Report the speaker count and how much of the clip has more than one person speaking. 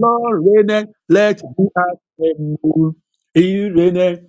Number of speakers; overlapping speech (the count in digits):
1, no overlap